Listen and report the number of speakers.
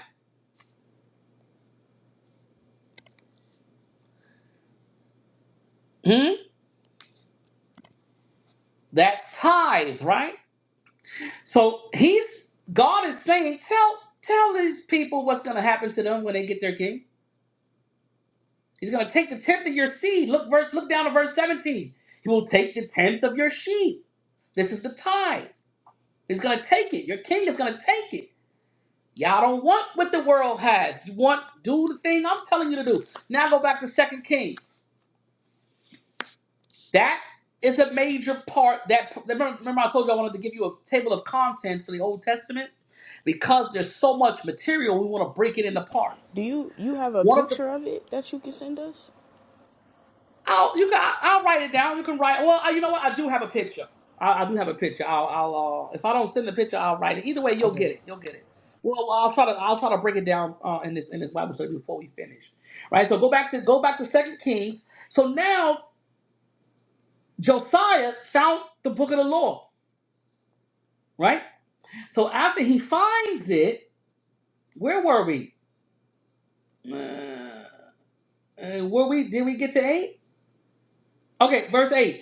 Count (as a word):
two